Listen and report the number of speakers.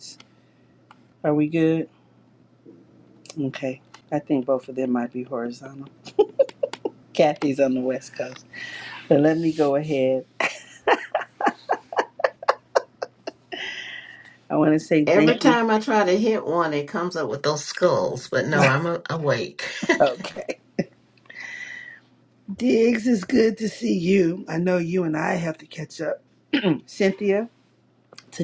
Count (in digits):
2